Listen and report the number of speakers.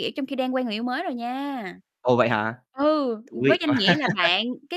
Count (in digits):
2